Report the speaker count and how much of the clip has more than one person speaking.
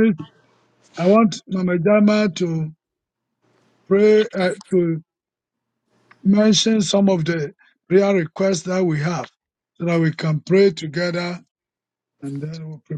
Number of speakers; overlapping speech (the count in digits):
1, no overlap